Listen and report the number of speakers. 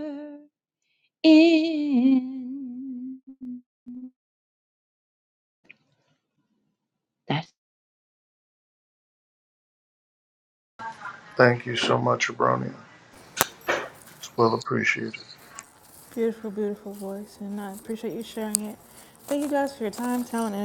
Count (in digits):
3